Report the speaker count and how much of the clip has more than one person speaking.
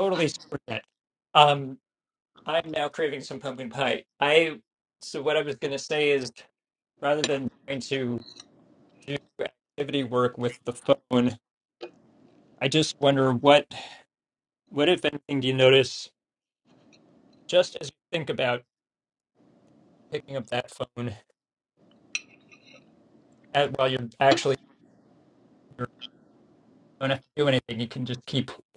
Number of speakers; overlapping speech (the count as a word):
one, no overlap